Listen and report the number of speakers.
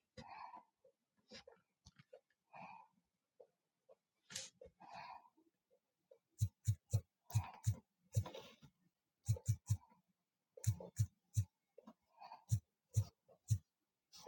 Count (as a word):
zero